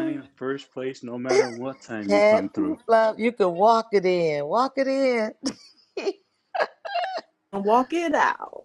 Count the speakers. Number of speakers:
three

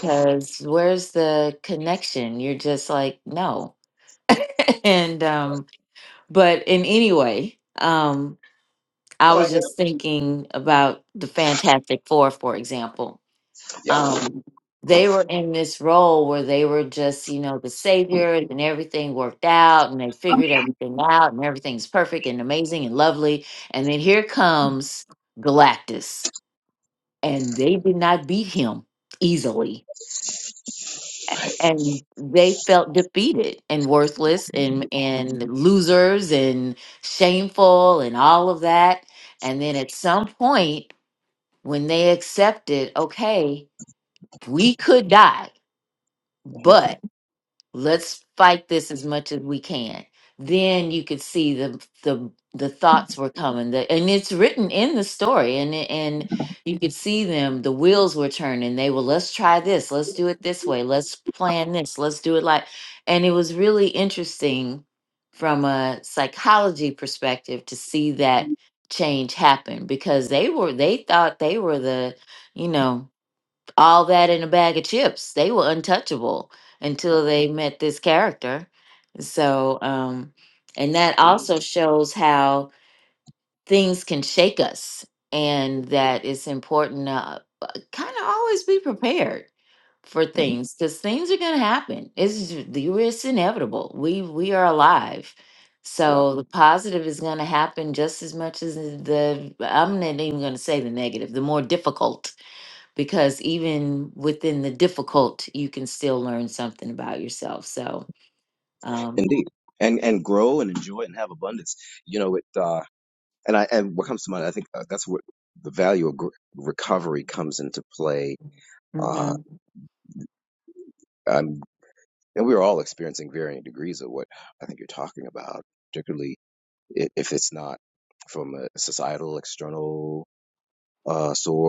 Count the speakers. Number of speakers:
two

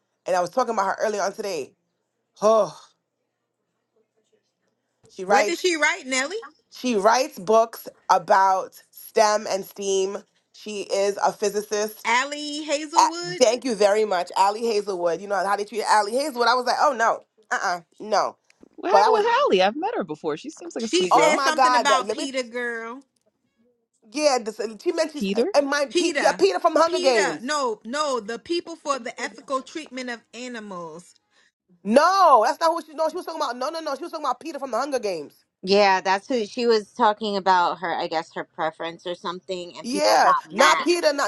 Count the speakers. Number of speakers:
four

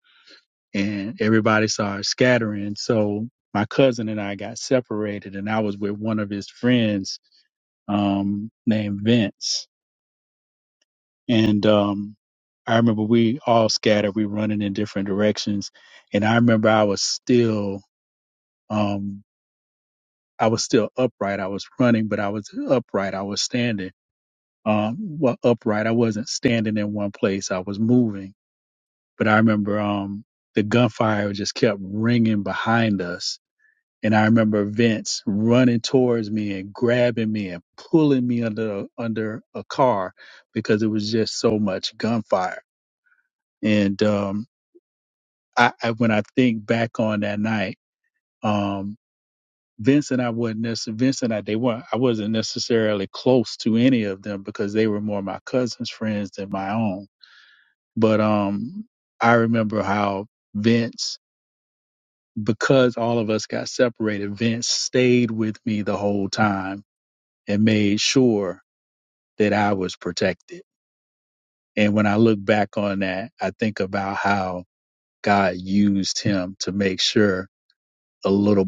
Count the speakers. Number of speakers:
one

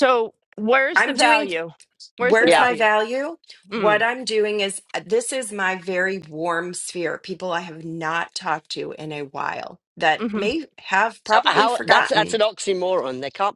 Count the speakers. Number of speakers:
three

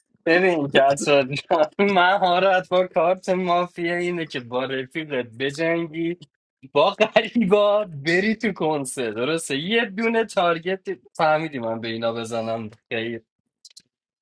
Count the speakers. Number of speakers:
one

